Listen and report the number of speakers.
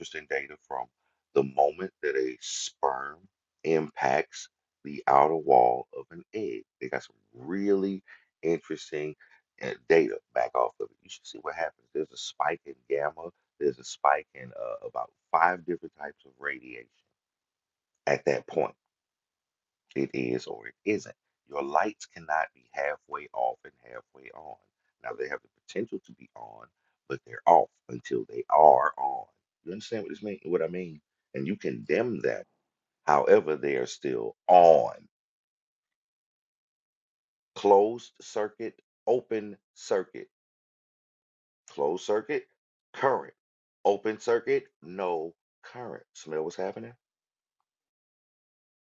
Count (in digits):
1